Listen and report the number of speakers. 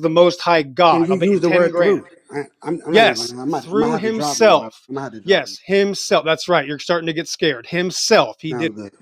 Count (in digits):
2